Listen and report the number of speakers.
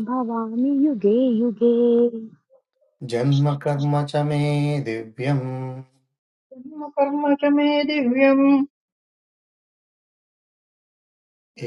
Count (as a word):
three